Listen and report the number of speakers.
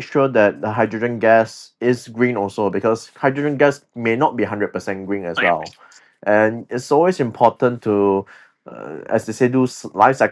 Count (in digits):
1